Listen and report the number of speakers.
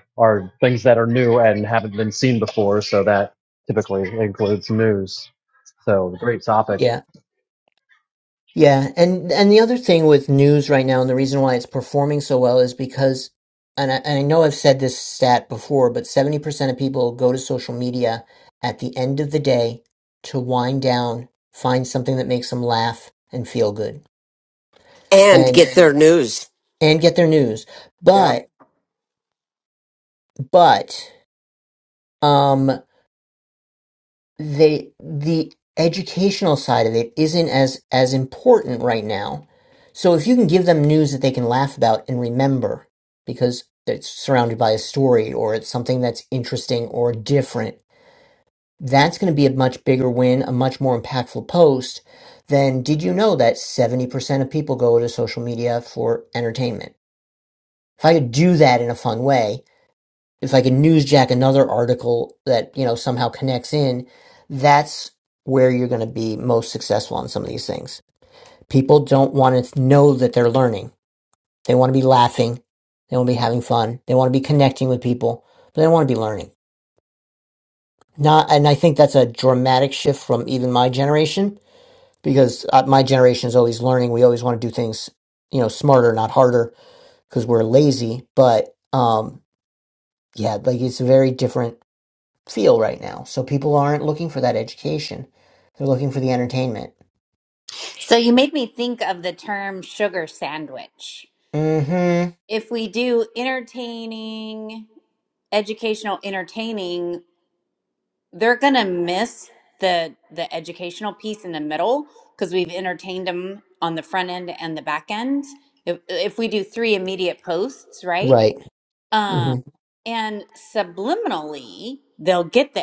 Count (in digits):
4